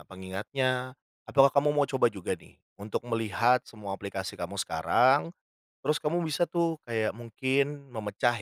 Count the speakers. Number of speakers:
1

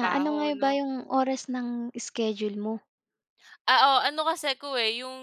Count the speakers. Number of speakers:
2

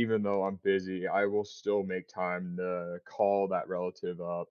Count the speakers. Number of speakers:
1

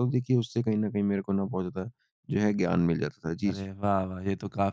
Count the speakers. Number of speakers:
2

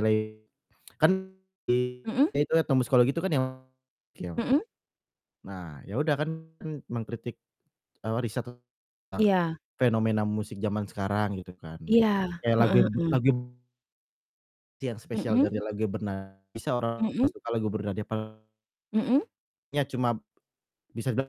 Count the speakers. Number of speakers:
2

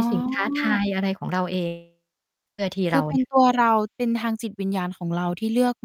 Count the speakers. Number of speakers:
2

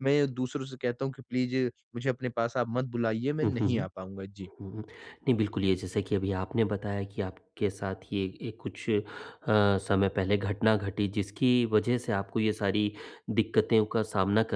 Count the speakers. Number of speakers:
2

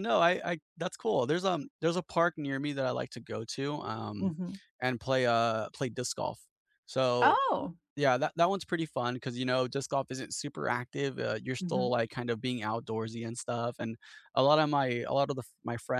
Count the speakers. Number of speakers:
2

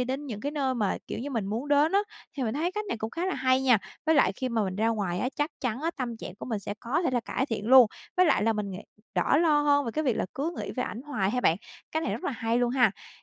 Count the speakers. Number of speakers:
1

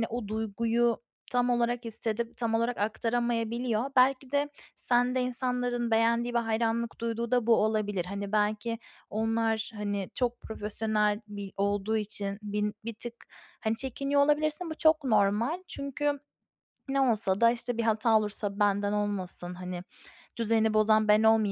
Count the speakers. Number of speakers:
1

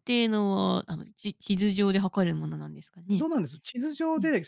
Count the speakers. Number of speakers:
2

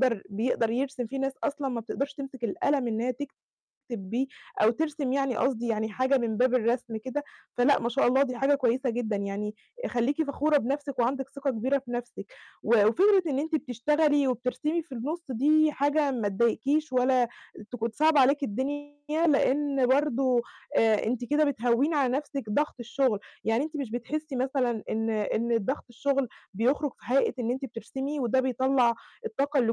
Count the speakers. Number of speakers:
1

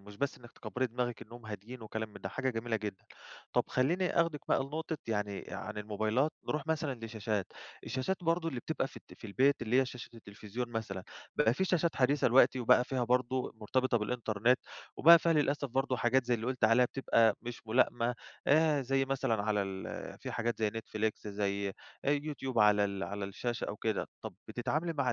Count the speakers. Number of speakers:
1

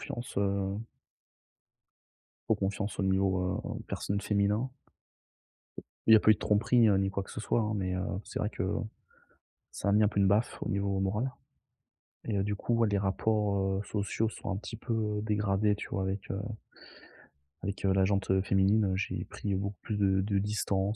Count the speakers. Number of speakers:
1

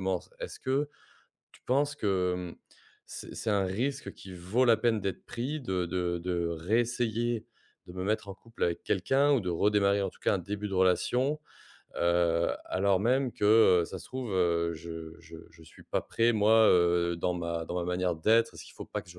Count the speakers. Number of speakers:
1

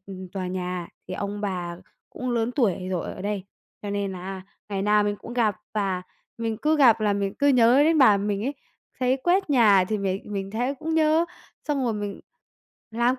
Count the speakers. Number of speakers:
1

